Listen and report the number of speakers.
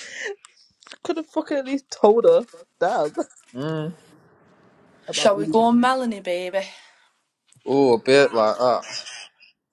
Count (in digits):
3